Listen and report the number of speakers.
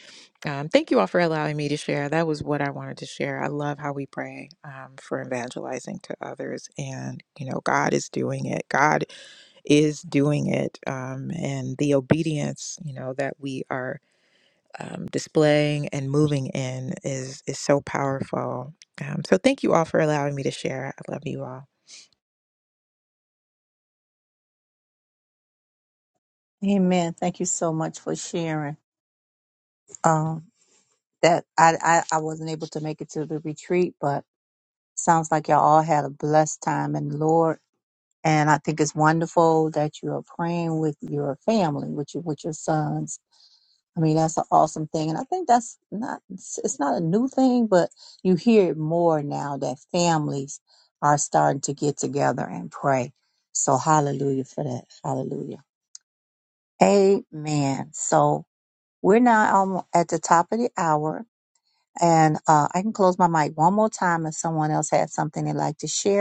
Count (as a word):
two